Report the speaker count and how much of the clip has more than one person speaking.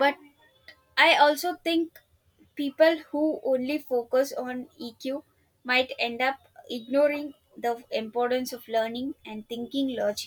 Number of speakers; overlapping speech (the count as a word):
one, no overlap